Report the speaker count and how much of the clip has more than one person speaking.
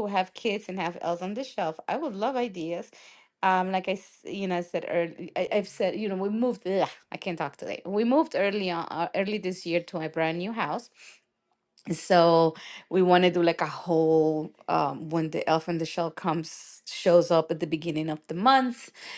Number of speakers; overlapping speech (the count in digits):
1, no overlap